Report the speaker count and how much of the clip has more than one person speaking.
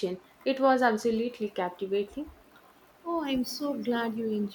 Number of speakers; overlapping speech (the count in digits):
2, no overlap